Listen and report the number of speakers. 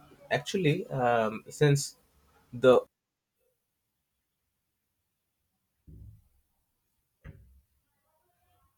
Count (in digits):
1